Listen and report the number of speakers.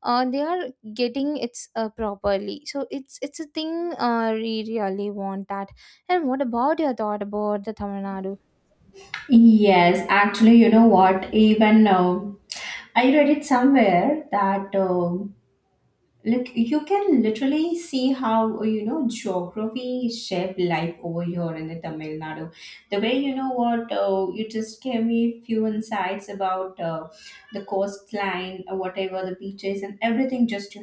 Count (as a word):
two